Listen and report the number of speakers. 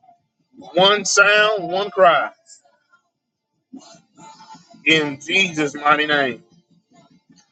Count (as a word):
one